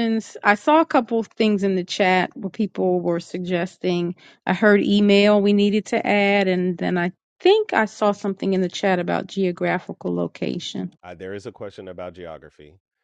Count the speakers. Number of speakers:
two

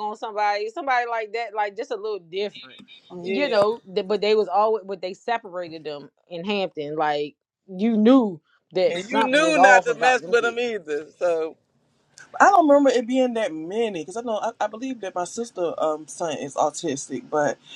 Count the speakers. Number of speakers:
three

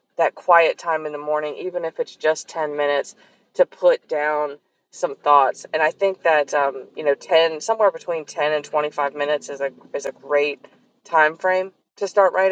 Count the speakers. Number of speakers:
one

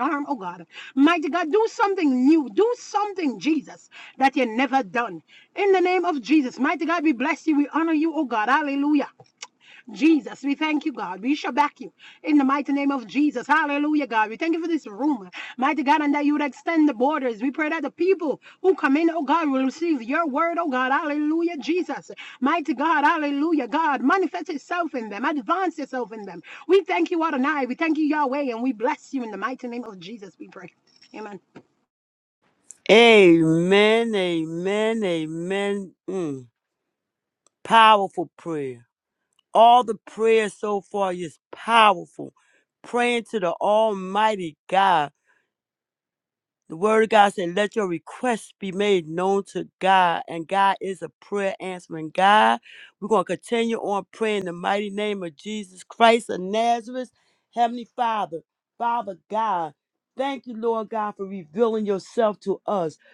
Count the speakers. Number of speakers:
two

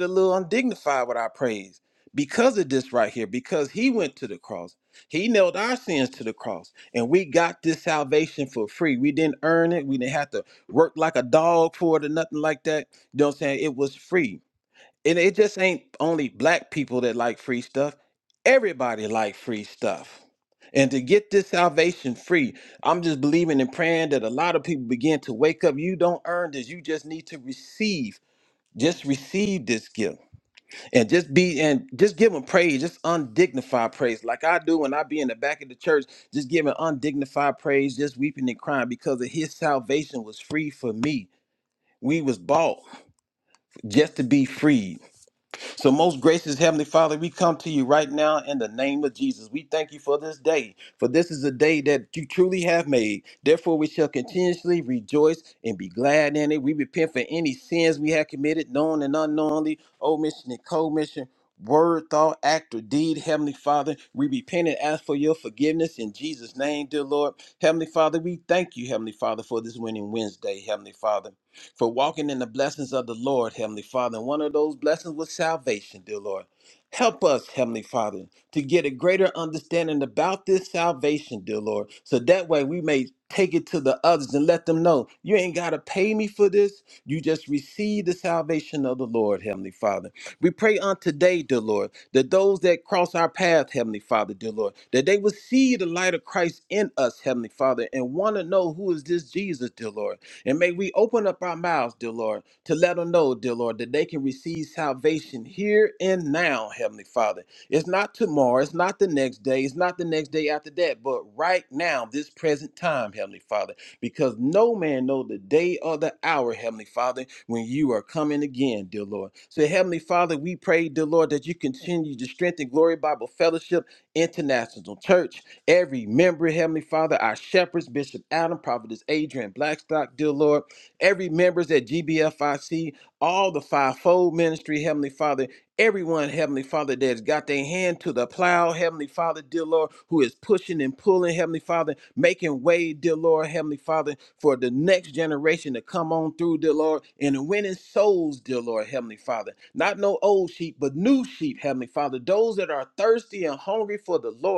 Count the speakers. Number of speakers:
one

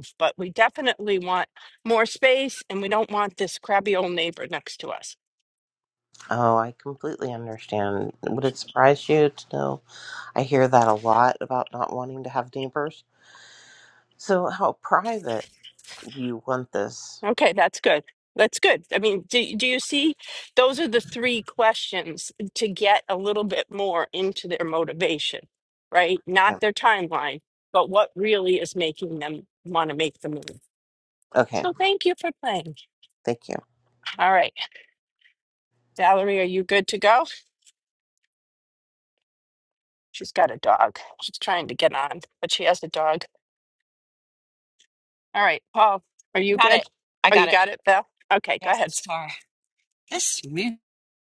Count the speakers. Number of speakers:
three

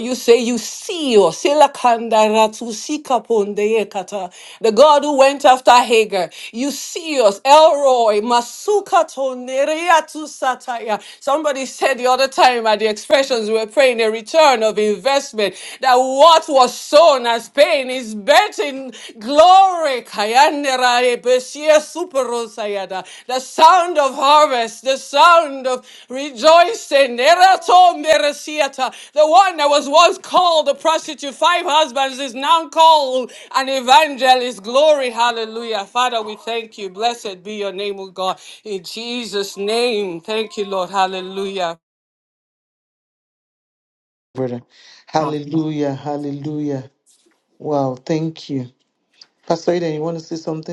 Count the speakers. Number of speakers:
two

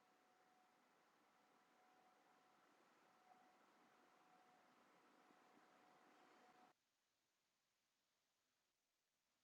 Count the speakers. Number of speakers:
zero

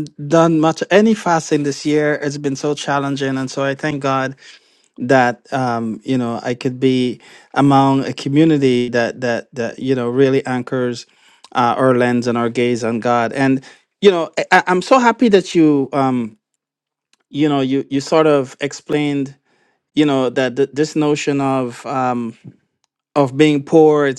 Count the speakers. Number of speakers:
one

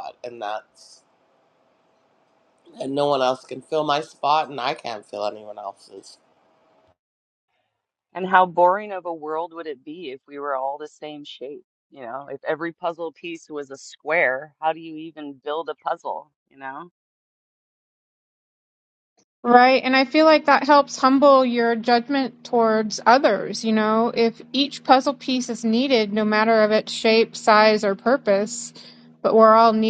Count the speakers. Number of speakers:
three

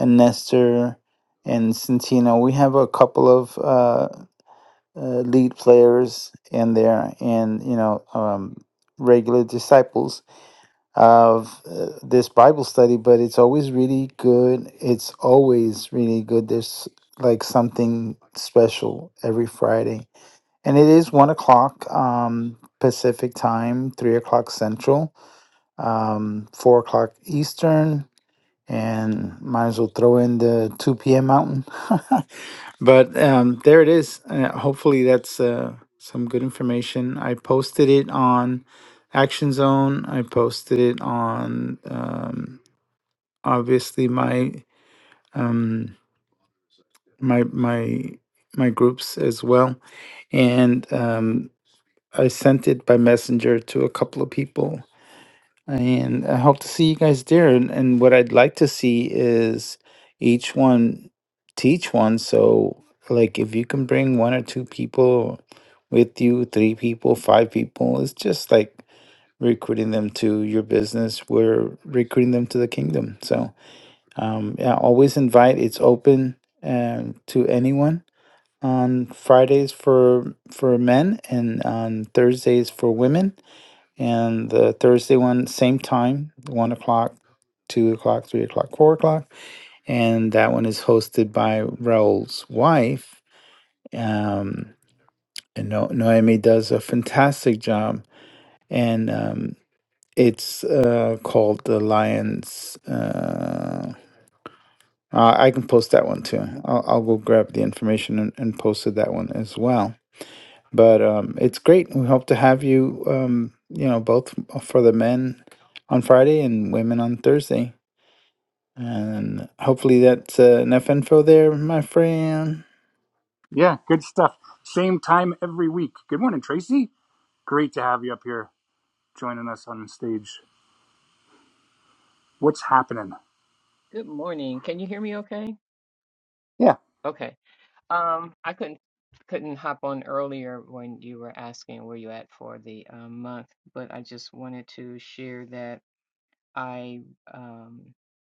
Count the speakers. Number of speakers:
three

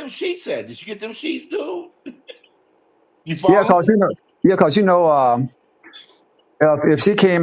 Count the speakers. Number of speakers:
two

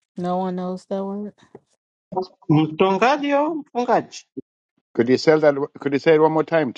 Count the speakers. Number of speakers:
three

